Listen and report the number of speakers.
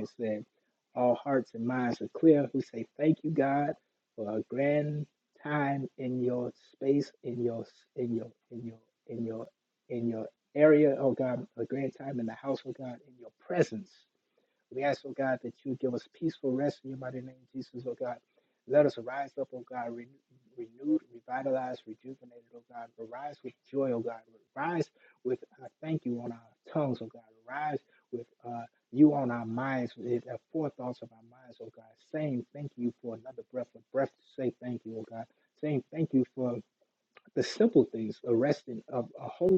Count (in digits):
1